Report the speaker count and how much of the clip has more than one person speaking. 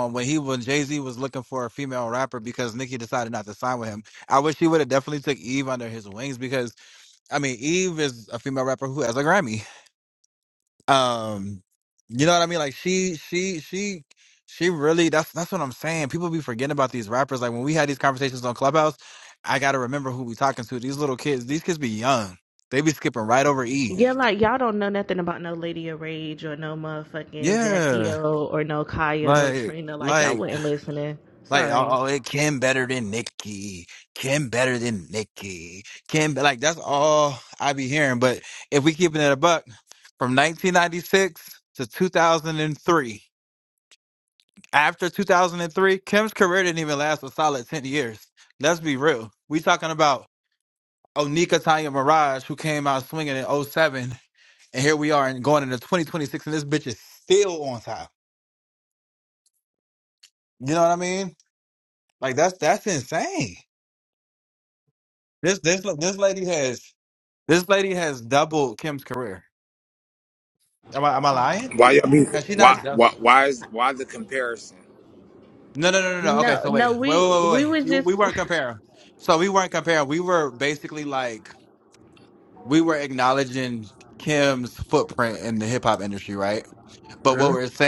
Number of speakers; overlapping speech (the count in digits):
3, about 6%